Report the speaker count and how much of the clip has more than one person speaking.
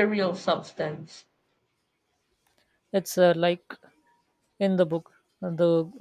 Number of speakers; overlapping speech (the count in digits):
2, no overlap